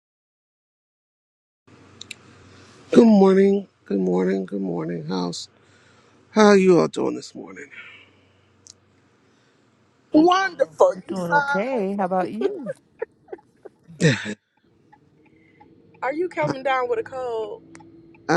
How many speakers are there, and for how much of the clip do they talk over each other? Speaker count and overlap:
3, about 5%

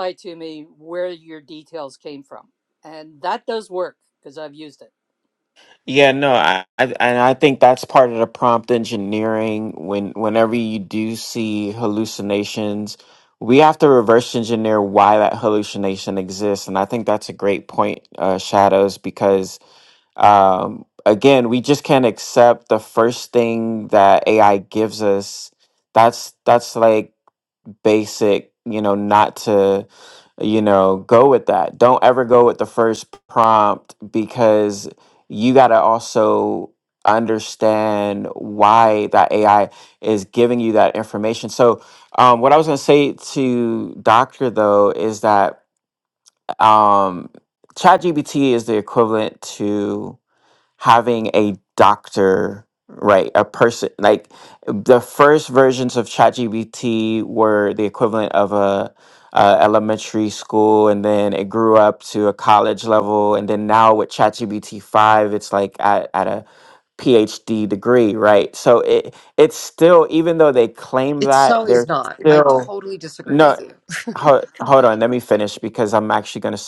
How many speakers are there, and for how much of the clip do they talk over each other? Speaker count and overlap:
3, about 2%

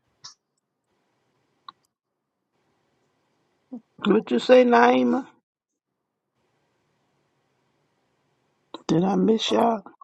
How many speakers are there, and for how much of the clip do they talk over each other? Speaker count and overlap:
1, no overlap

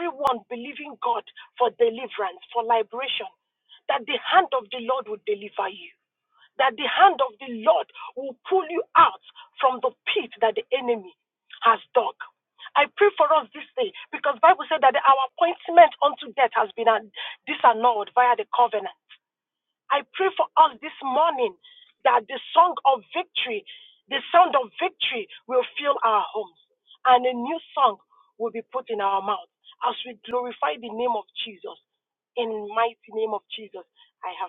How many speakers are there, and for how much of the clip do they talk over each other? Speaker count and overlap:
1, no overlap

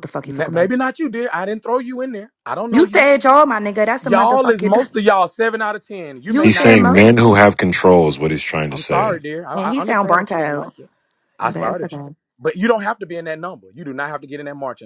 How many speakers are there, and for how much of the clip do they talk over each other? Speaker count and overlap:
3, about 30%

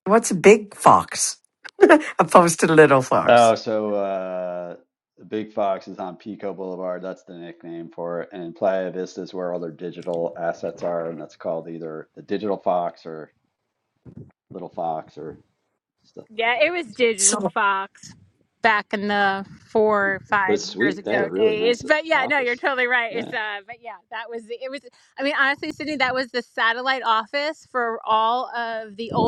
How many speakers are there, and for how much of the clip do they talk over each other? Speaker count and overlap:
3, about 10%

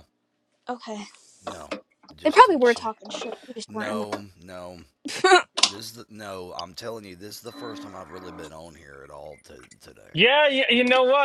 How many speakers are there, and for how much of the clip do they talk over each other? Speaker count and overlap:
3, about 9%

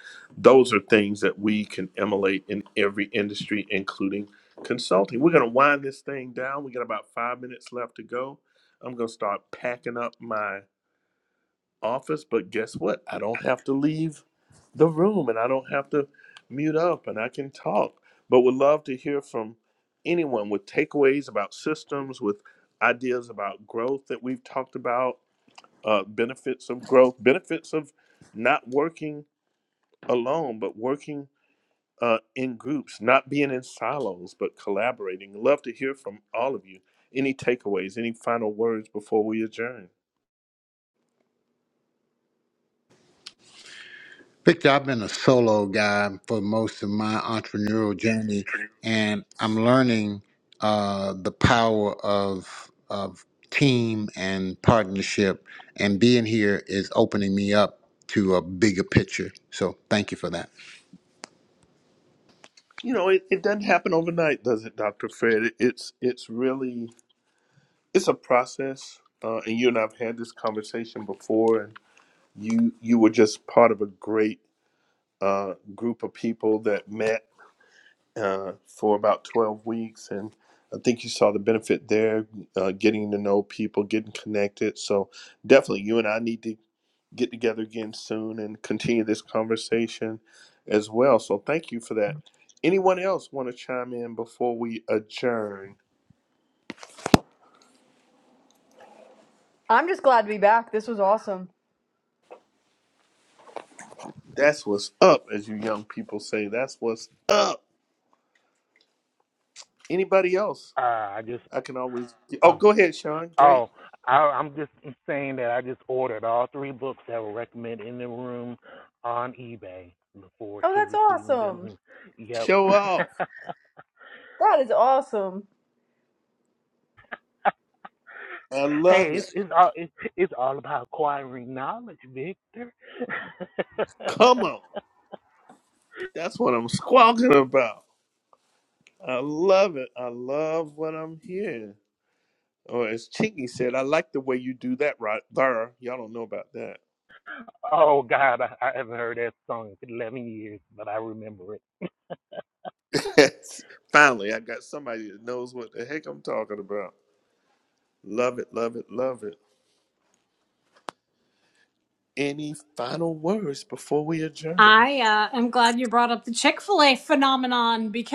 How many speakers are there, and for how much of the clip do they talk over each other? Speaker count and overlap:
5, about 1%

